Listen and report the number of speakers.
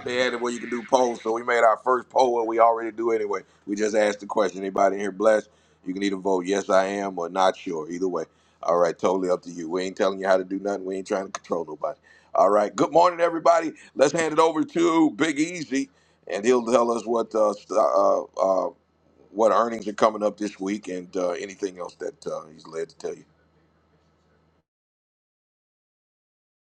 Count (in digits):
1